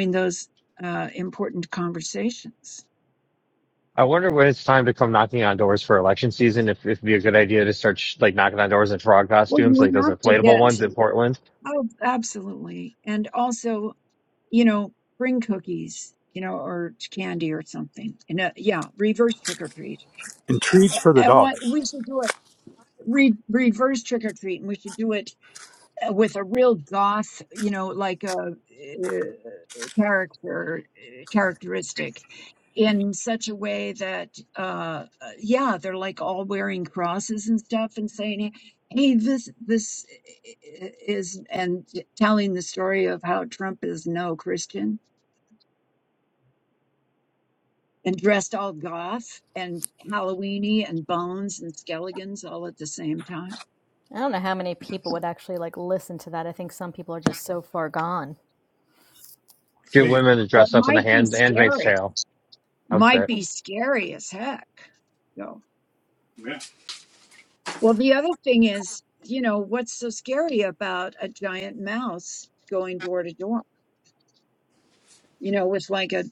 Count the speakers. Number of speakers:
4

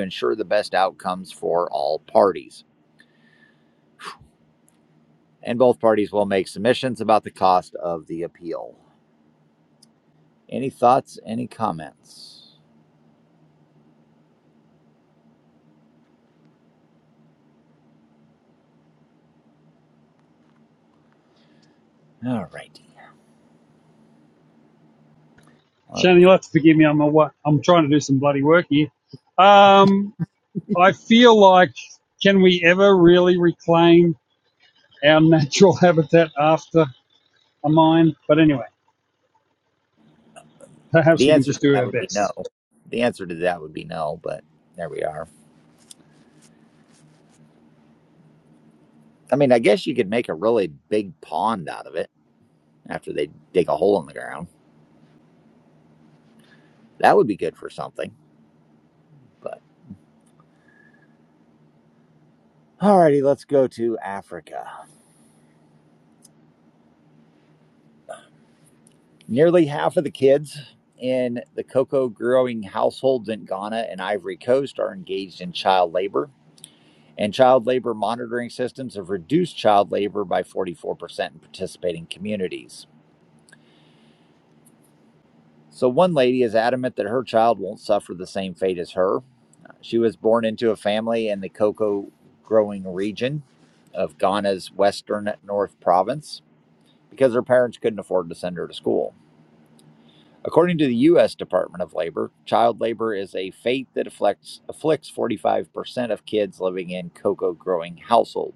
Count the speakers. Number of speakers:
2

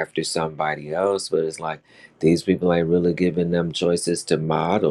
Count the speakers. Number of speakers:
1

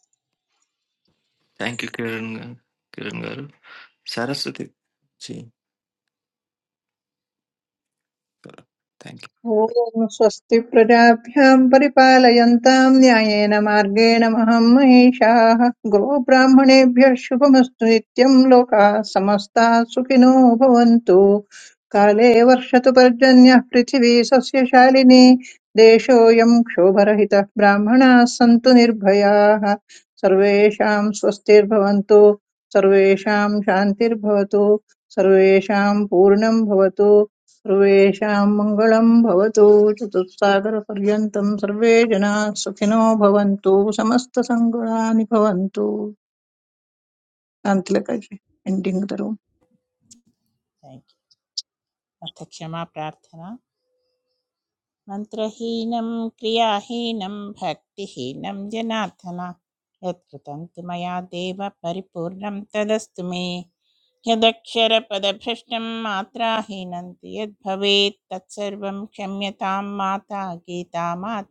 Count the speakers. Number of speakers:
3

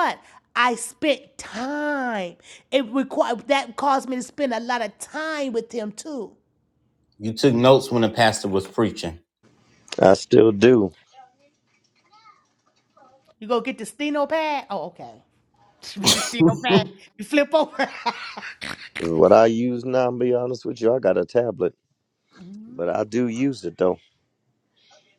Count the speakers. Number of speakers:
3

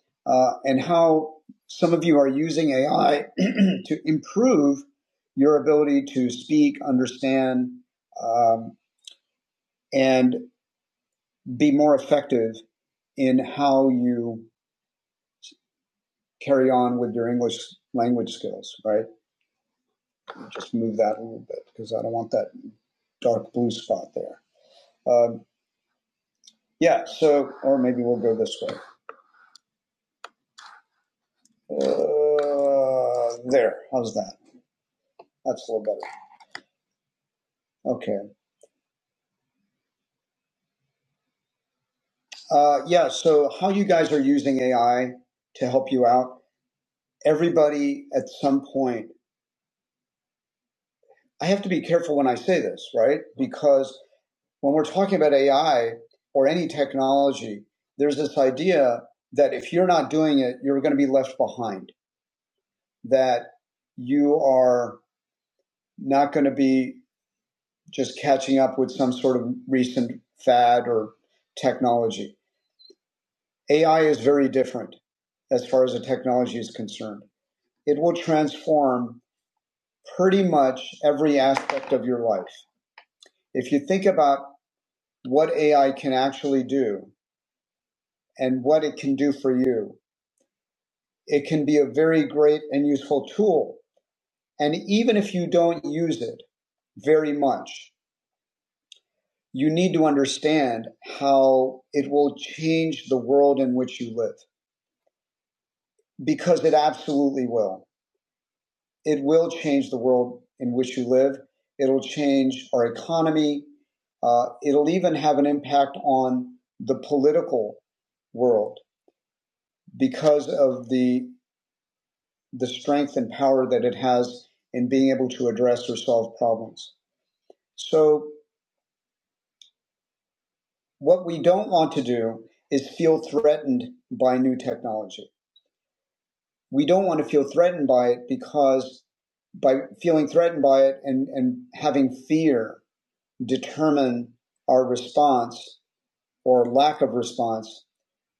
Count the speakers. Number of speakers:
1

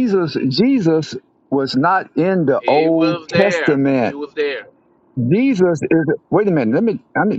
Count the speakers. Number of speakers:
2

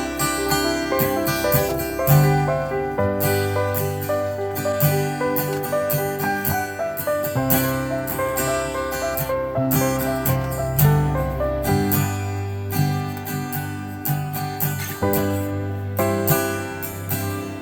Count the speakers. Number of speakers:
0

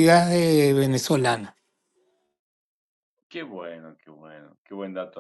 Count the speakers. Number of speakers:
2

